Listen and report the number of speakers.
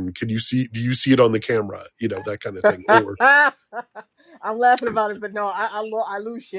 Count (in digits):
2